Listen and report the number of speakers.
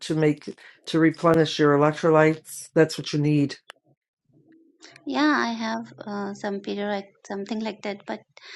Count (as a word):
two